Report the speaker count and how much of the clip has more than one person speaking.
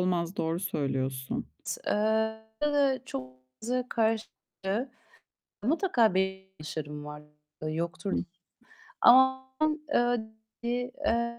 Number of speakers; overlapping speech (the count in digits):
2, about 1%